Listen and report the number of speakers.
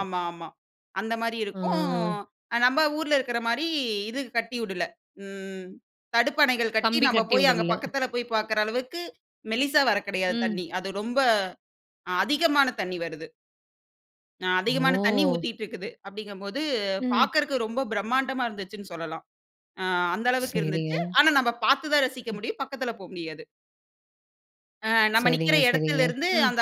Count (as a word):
two